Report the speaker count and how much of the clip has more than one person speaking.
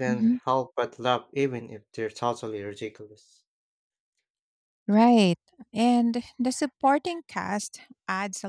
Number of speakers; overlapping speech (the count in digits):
2, about 4%